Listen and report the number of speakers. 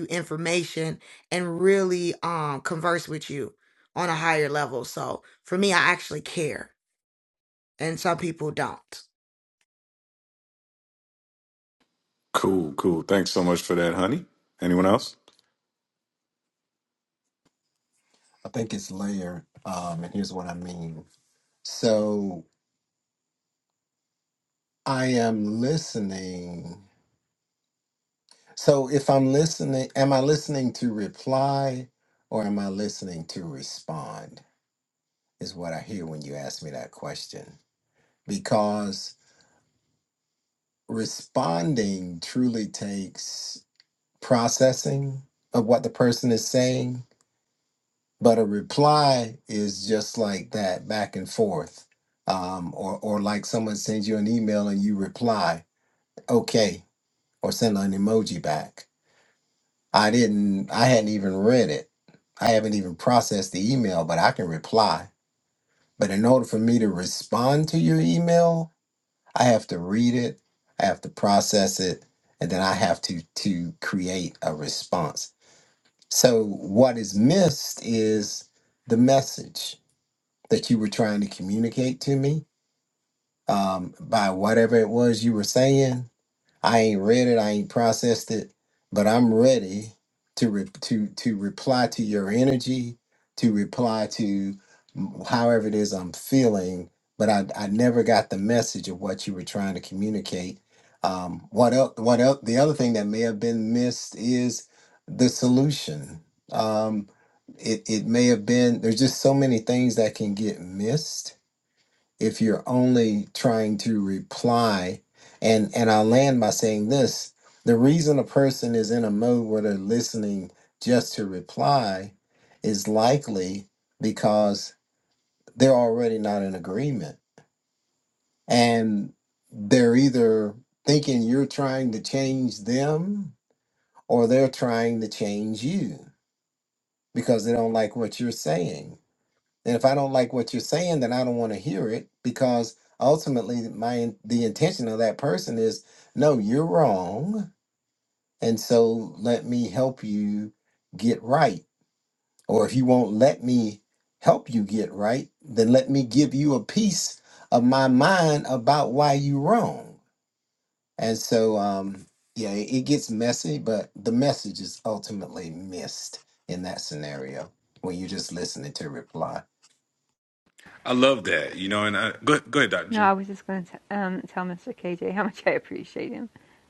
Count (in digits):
4